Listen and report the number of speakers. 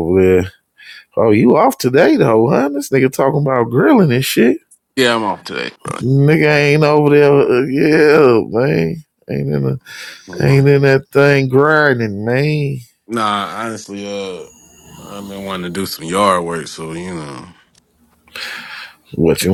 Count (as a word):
two